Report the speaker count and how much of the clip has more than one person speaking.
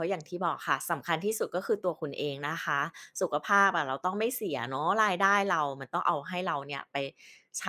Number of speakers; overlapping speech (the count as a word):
one, no overlap